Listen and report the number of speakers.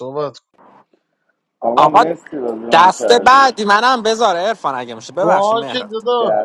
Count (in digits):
3